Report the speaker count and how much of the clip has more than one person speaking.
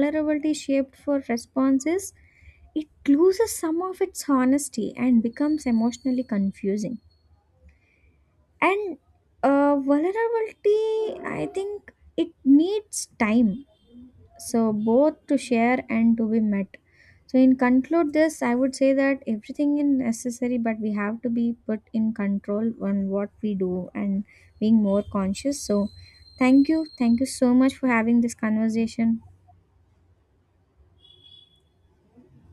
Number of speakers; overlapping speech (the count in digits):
1, no overlap